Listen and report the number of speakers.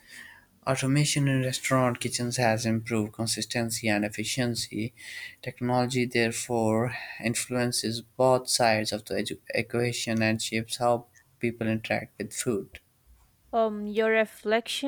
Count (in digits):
2